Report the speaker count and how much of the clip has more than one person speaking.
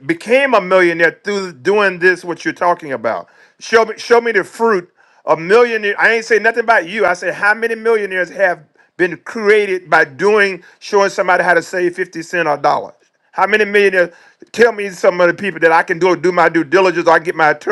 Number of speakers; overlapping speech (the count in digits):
1, no overlap